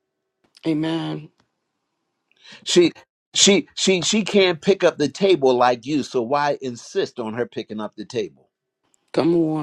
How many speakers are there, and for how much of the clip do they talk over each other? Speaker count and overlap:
two, no overlap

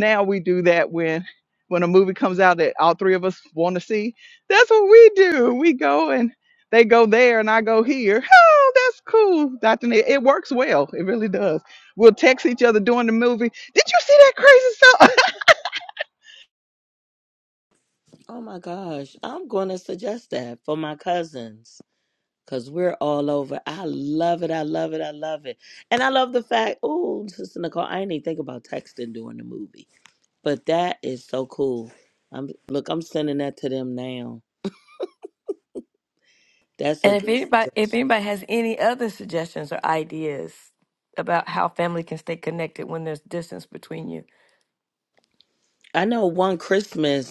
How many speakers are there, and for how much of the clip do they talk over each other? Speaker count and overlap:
three, about 1%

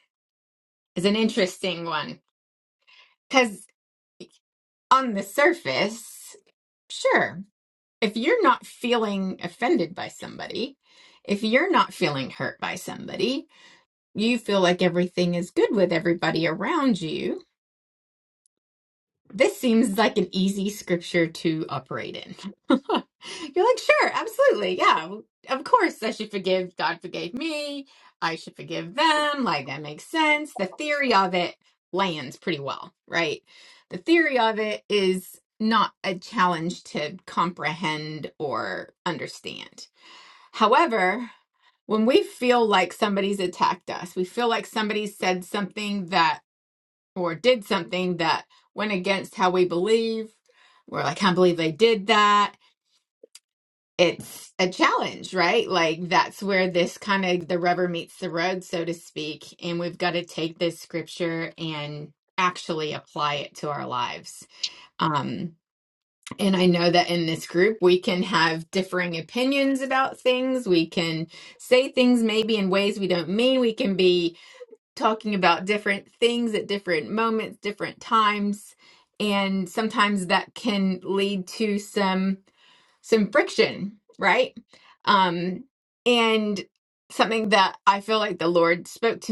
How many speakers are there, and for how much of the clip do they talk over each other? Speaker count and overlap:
one, no overlap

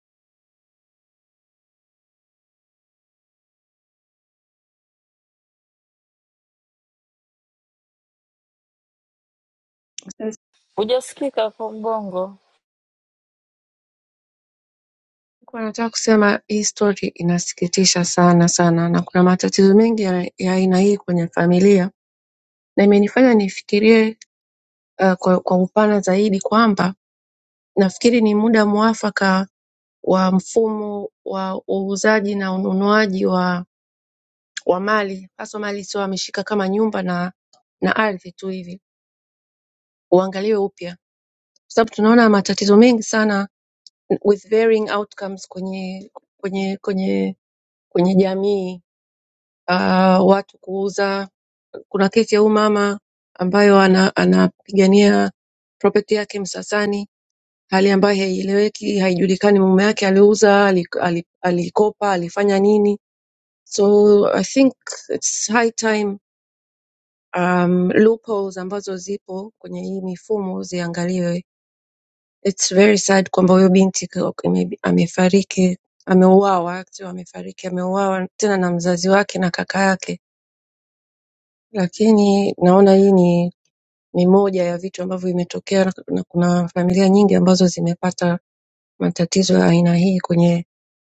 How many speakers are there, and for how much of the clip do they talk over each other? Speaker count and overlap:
two, no overlap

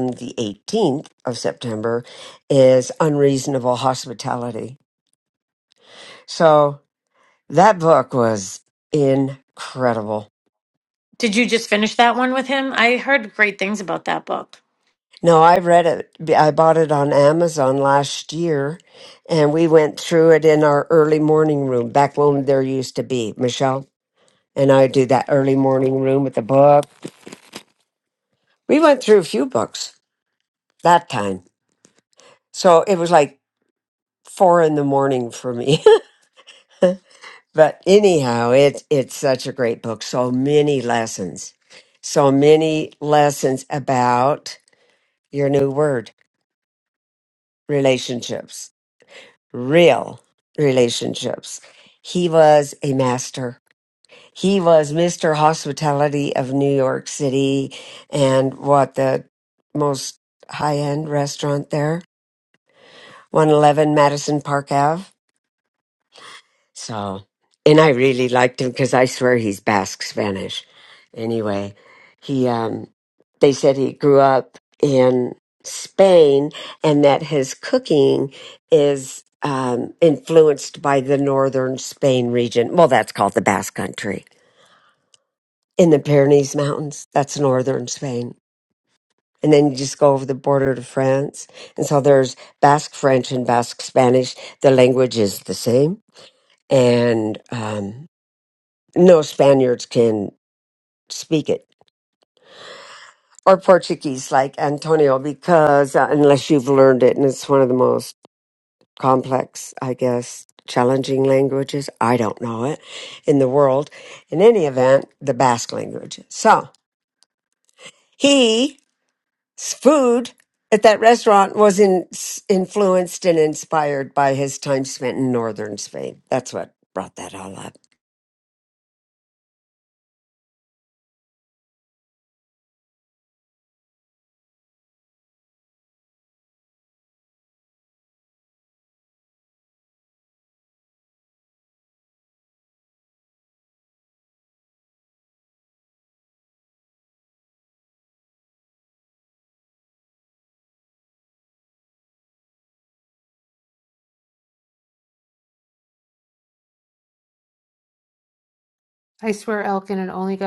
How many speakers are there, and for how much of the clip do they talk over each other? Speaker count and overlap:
three, no overlap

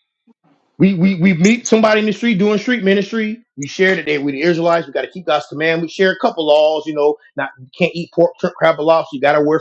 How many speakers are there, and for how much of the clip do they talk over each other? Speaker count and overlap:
one, no overlap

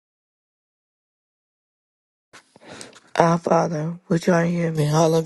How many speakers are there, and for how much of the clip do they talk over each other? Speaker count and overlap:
one, no overlap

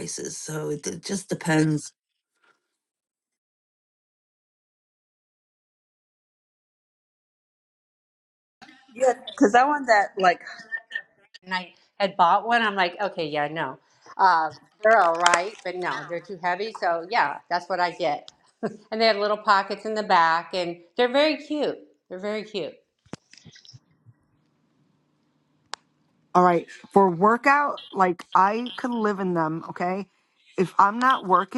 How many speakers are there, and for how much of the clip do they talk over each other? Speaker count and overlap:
four, no overlap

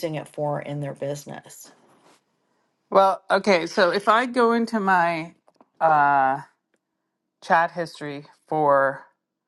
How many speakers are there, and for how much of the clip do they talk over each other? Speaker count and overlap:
two, no overlap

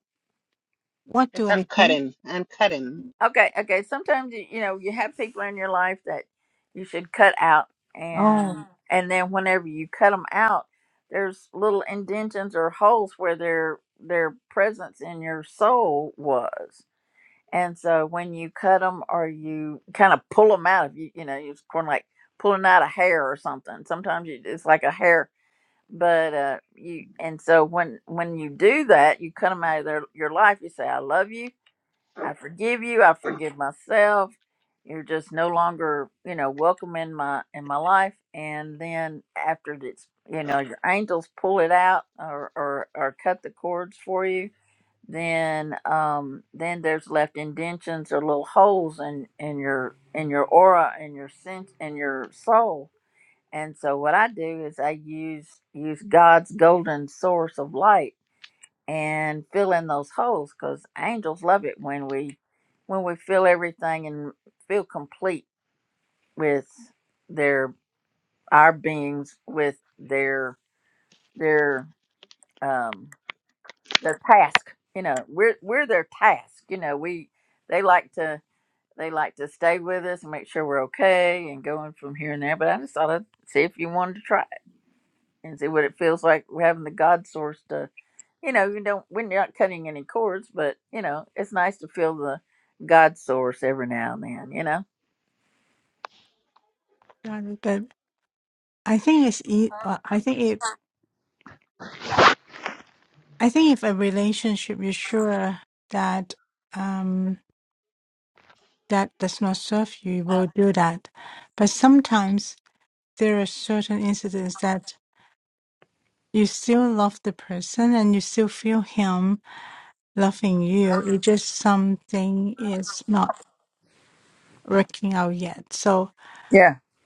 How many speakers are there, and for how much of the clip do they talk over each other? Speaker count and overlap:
three, about 1%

